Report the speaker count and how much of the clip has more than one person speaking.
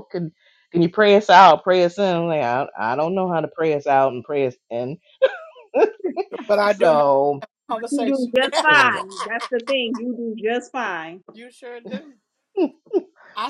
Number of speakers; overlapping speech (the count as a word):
three, about 7%